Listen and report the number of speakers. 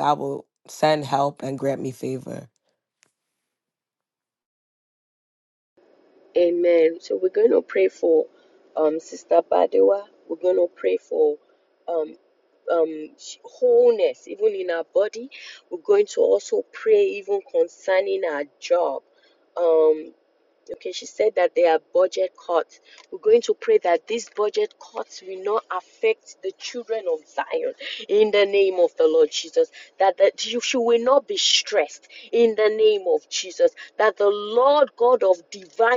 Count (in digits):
2